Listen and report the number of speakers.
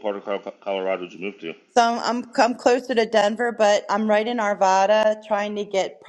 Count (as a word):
two